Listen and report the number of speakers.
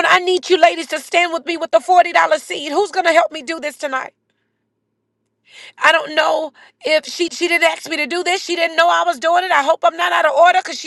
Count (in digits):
1